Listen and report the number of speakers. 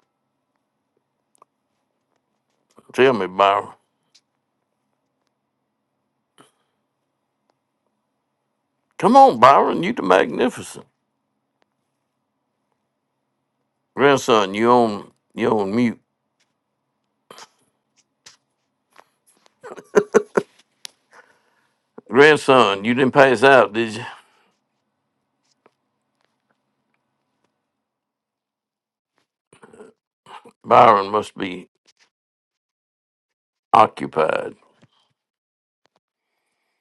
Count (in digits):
1